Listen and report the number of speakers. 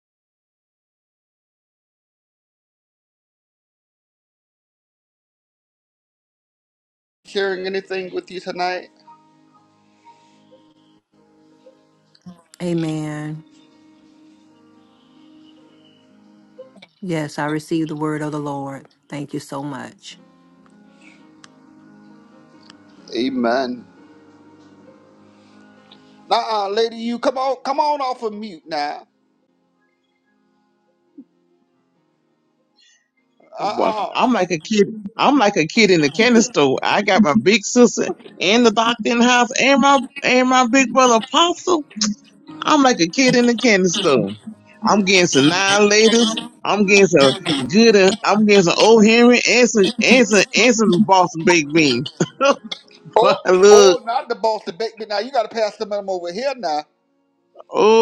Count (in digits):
3